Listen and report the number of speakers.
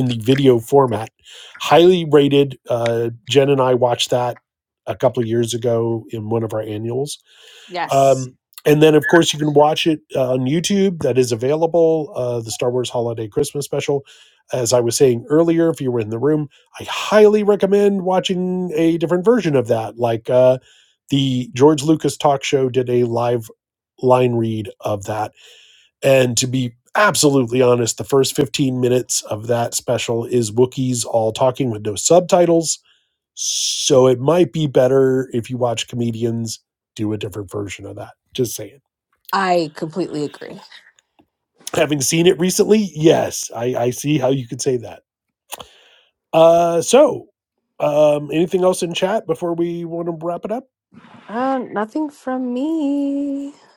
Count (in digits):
2